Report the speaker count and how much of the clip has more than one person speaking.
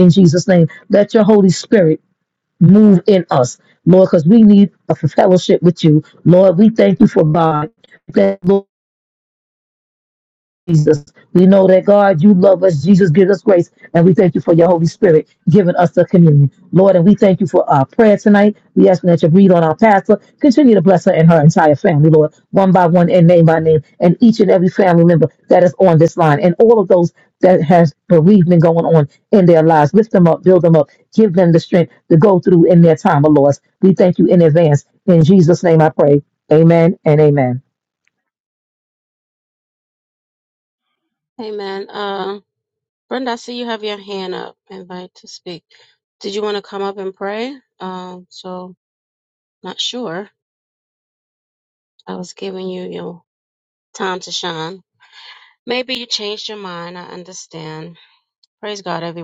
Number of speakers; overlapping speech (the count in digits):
2, no overlap